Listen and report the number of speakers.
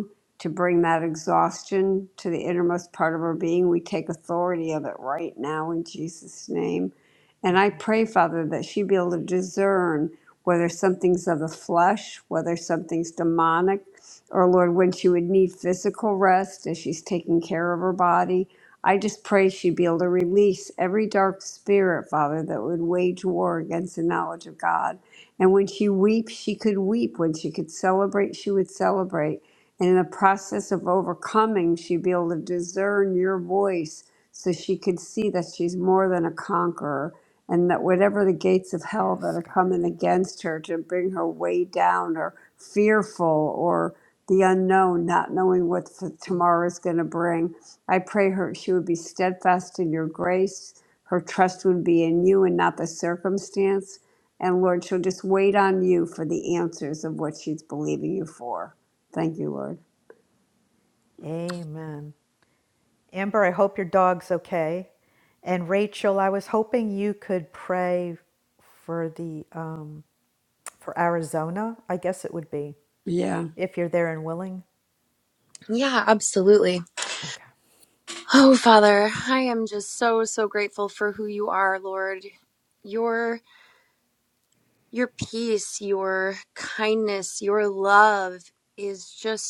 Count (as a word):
three